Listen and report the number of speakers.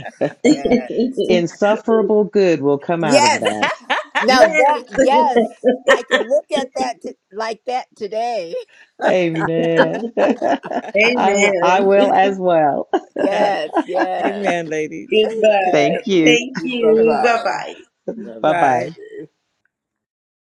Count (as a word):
four